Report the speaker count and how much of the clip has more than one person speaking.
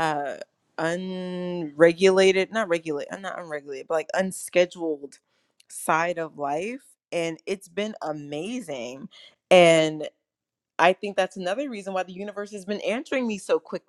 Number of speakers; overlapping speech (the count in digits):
1, no overlap